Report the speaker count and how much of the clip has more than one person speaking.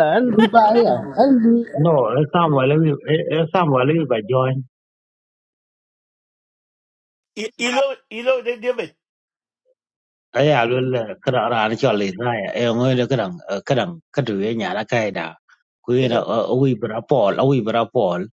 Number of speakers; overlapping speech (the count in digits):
3, about 1%